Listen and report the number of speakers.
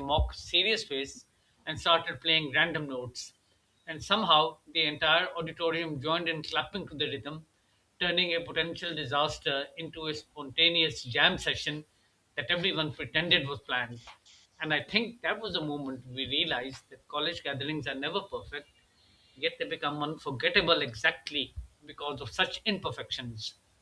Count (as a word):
one